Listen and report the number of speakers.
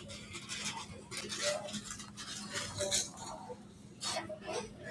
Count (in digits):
0